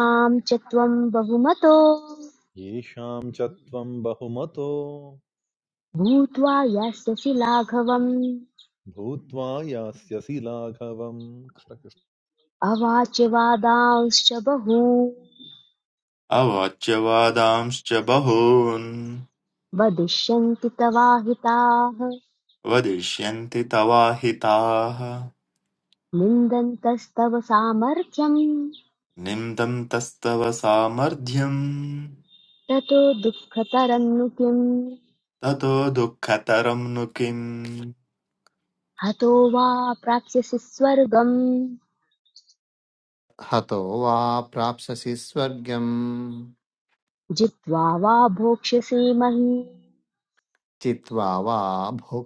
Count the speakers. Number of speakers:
four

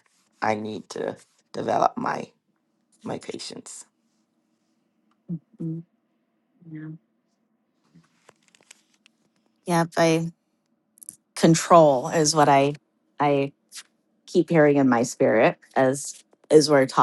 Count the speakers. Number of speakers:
two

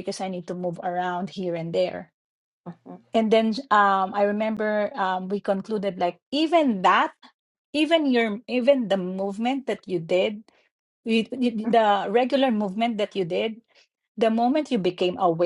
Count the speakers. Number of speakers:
one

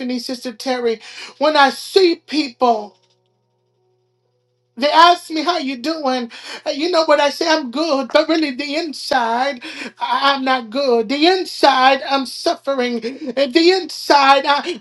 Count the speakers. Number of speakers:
one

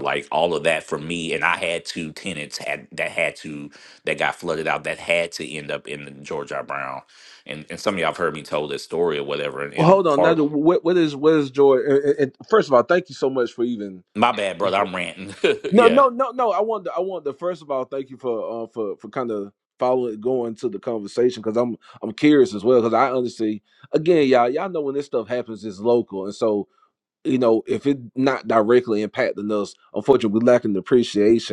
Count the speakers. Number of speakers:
two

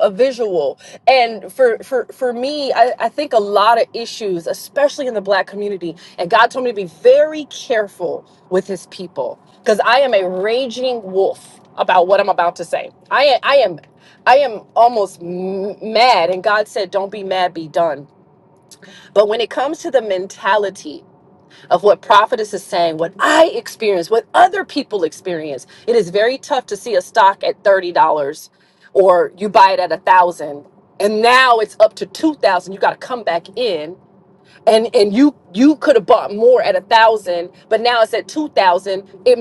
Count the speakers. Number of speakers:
one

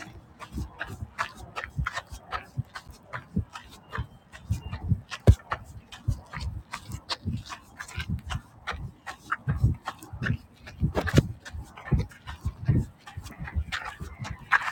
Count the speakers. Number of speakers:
zero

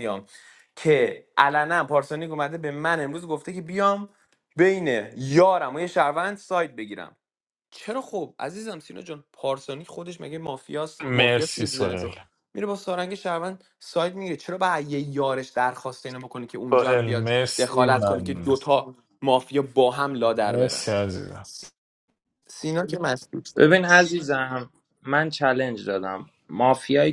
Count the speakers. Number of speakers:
three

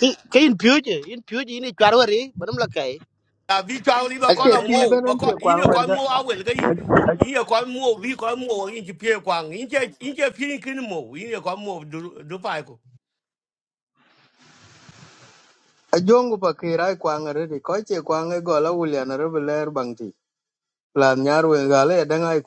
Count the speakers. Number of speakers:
three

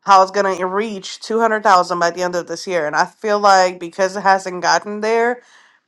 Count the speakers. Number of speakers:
one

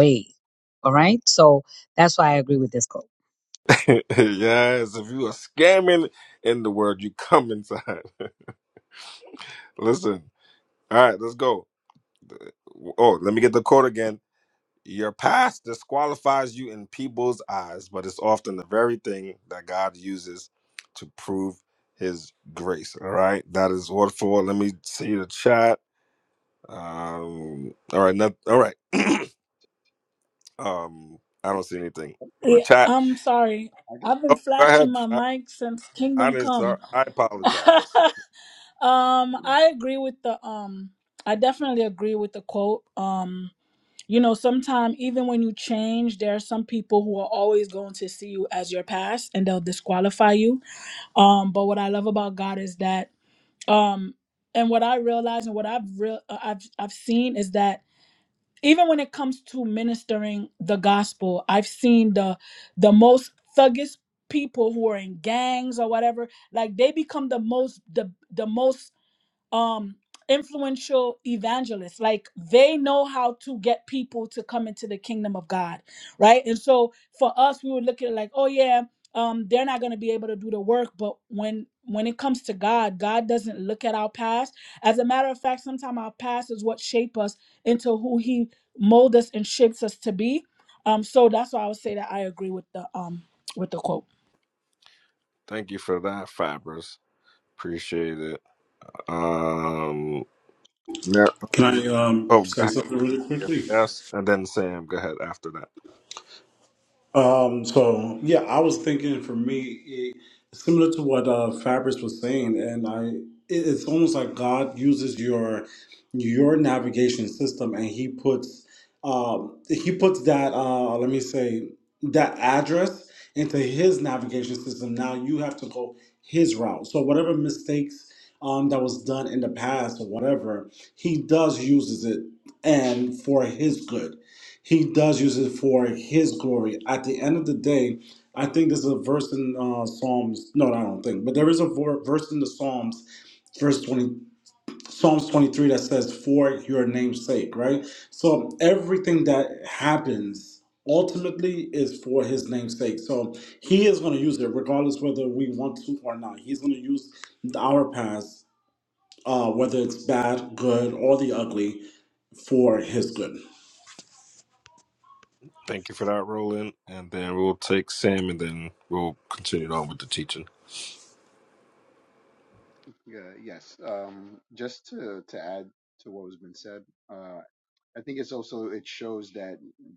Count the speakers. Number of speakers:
five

